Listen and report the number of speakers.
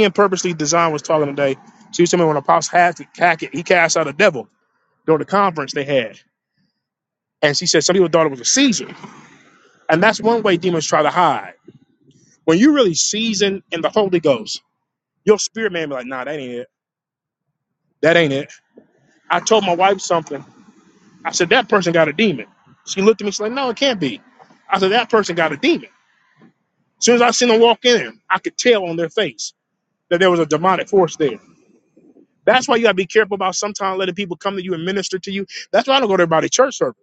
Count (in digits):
1